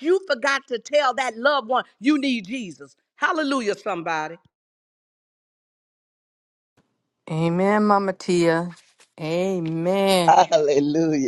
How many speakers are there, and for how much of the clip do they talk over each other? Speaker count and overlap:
3, no overlap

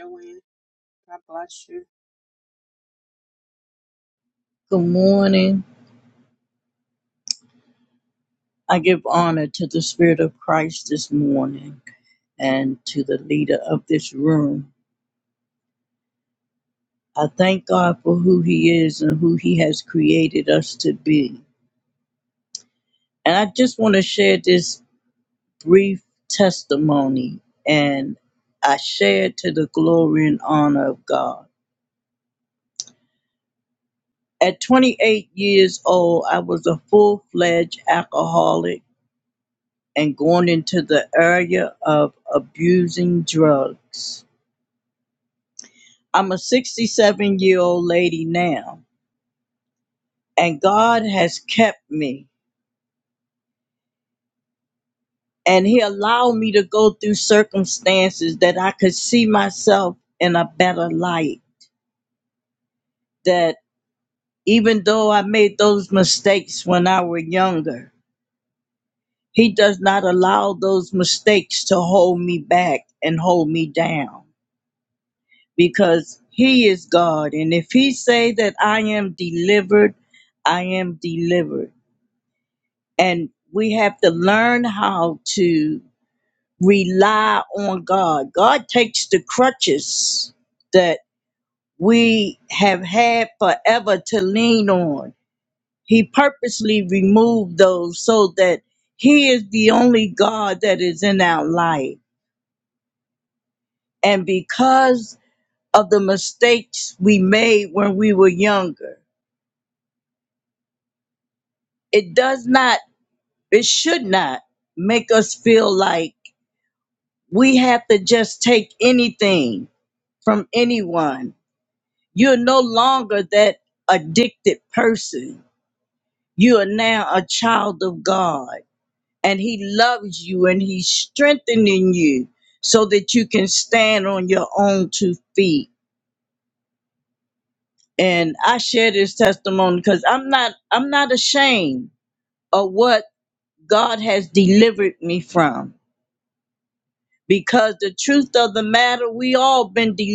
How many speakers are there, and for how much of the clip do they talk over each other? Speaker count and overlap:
2, no overlap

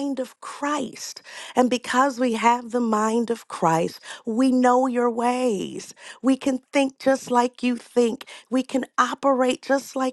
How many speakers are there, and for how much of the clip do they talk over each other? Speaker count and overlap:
1, no overlap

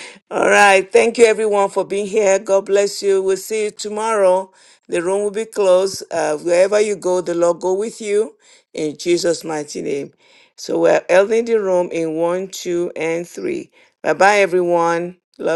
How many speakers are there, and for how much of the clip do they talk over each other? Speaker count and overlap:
1, no overlap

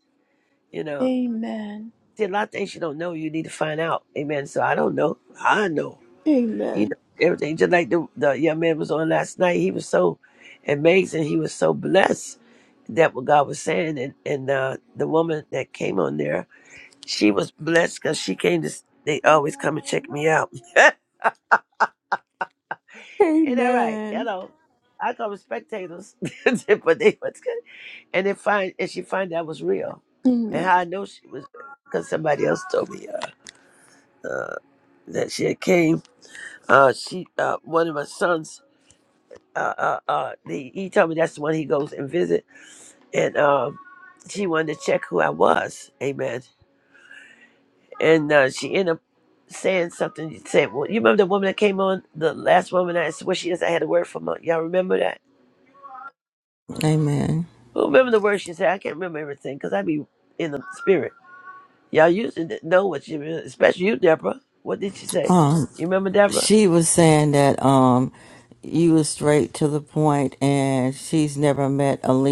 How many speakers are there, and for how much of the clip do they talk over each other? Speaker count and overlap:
3, about 2%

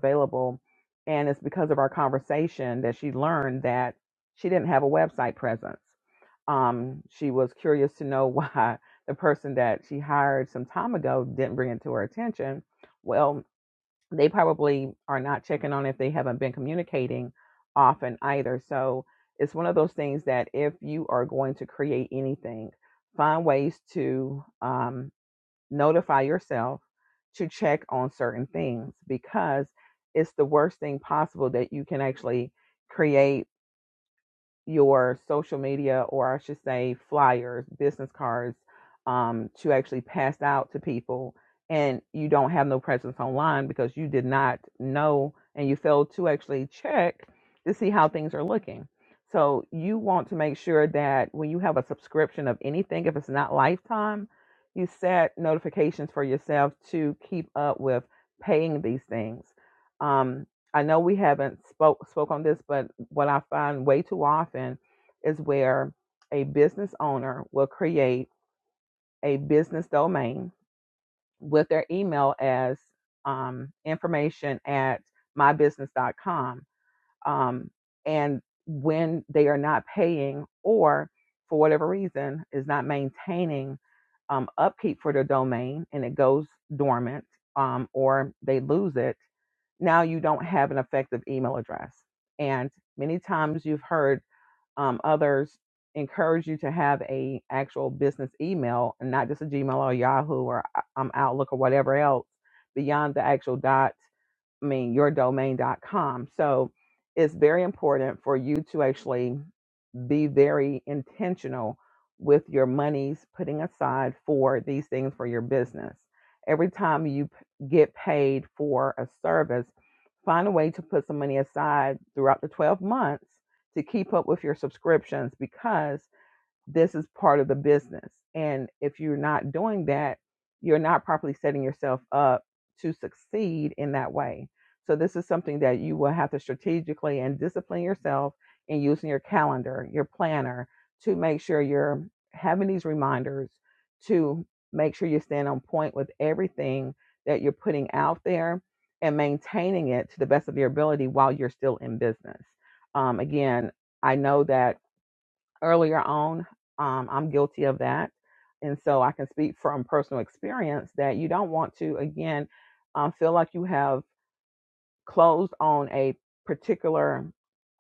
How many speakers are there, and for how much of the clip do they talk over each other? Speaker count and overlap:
1, no overlap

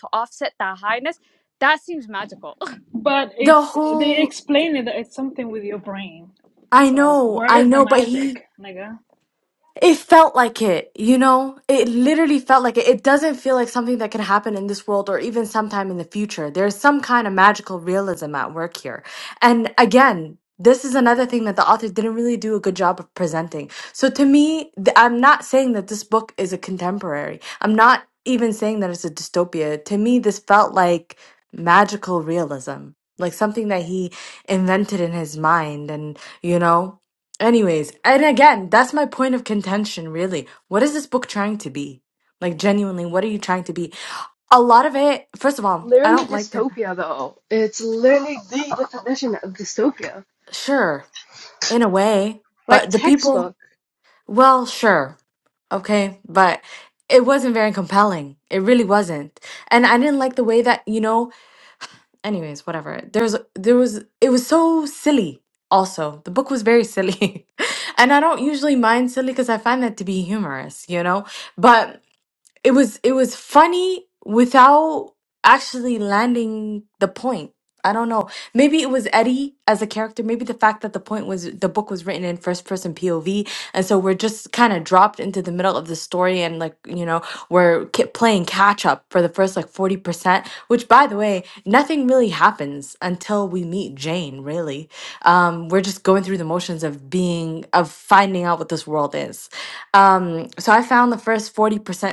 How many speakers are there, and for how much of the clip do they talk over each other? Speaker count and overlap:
4, about 4%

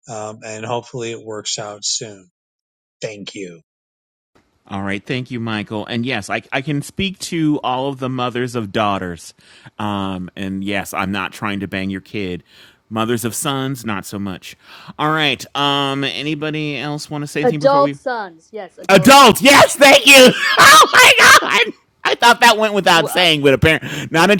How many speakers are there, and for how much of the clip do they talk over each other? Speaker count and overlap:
3, about 5%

